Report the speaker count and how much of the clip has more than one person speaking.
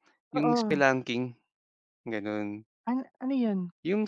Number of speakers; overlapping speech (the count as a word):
two, about 10%